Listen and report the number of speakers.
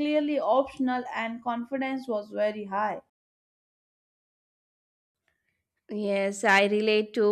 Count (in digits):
2